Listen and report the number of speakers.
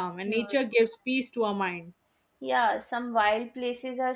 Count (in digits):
2